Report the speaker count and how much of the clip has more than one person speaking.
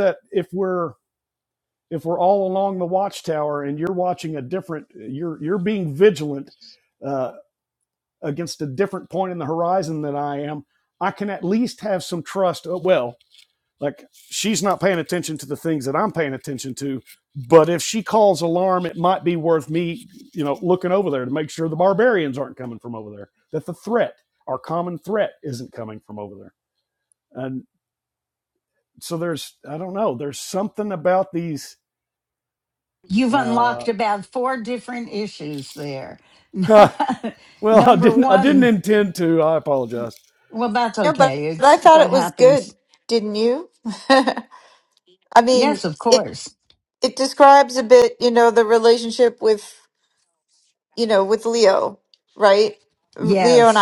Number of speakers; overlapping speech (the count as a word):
three, about 8%